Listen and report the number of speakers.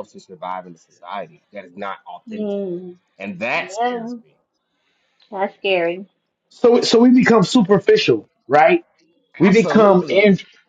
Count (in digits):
3